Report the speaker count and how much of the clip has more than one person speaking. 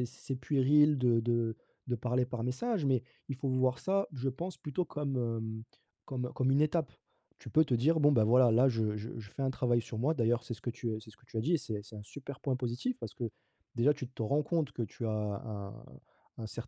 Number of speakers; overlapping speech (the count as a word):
one, no overlap